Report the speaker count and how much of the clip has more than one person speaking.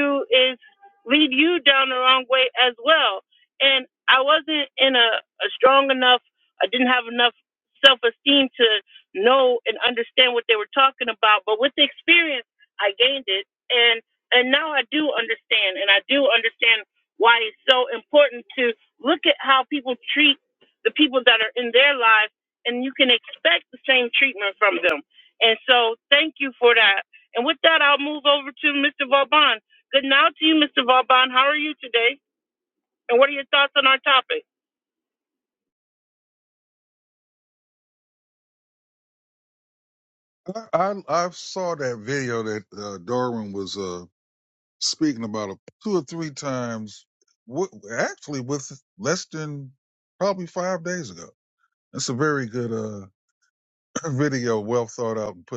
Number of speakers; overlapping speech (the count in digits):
2, no overlap